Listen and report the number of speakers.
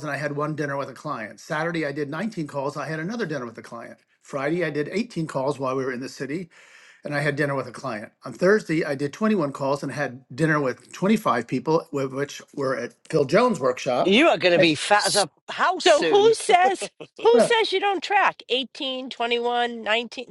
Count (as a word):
three